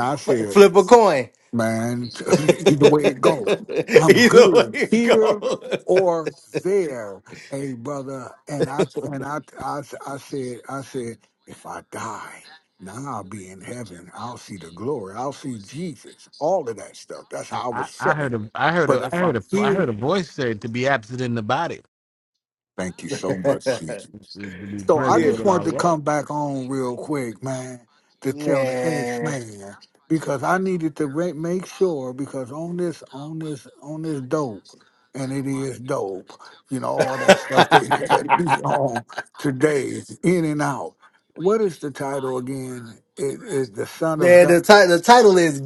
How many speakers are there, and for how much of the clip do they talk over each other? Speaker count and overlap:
three, about 13%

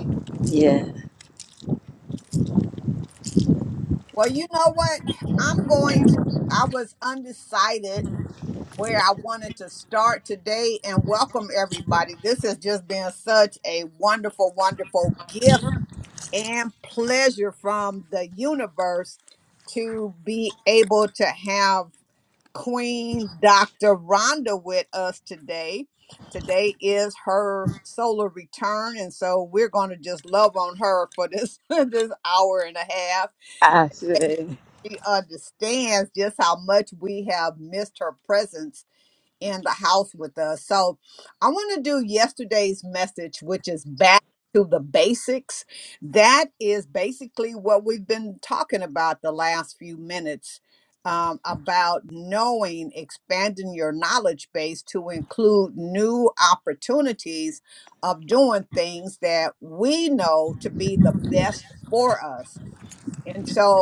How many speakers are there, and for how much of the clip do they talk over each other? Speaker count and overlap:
two, no overlap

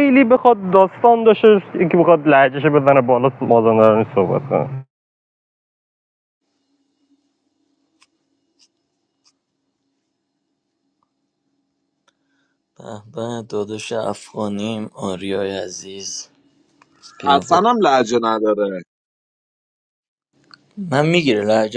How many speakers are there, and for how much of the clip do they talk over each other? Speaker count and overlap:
three, about 2%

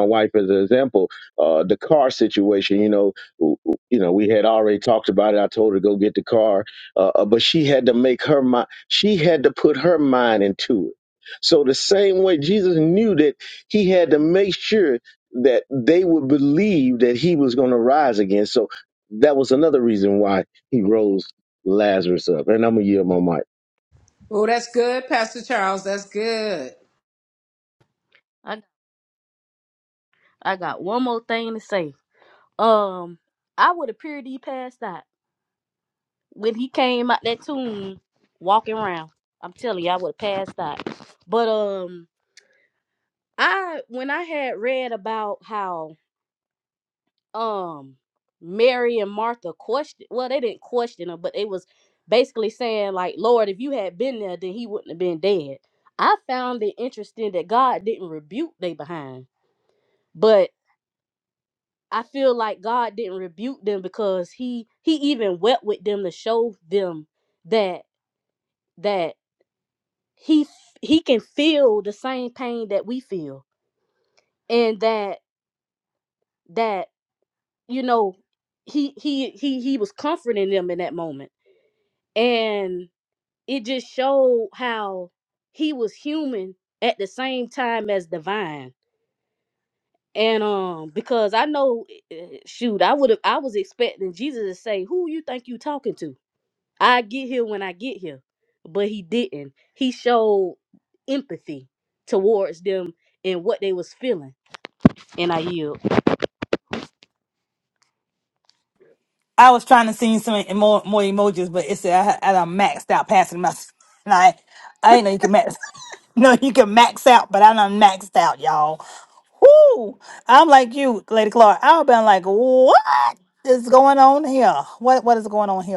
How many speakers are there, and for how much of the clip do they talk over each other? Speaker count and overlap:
four, no overlap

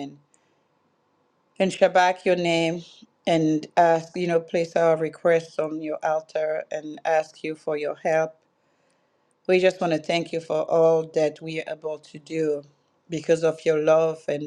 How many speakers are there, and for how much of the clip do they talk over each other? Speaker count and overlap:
one, no overlap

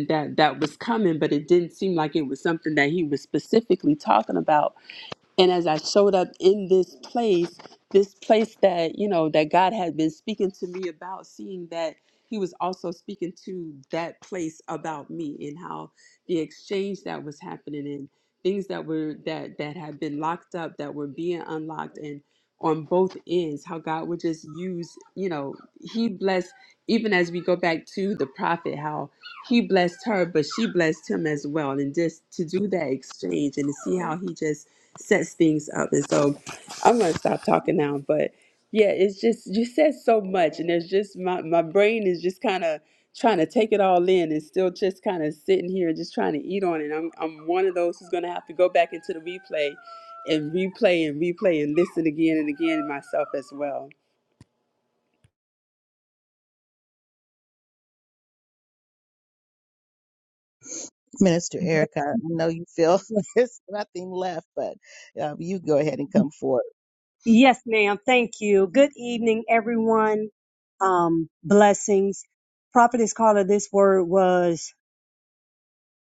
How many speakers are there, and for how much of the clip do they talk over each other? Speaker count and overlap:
three, no overlap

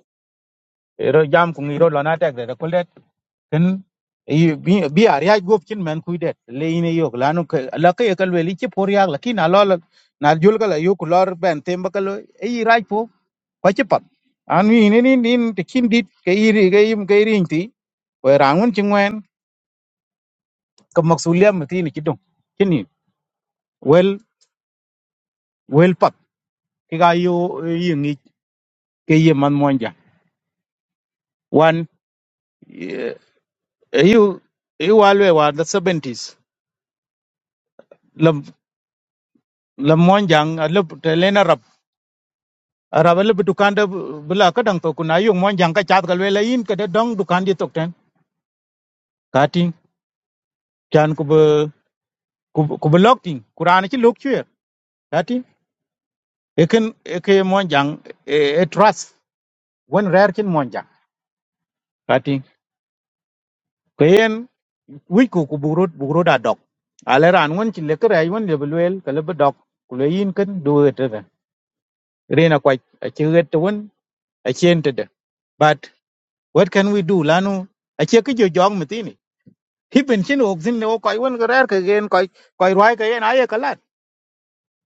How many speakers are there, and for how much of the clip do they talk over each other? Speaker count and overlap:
one, no overlap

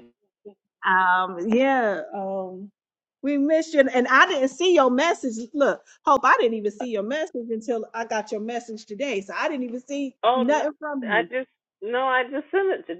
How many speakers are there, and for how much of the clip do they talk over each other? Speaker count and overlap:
two, about 5%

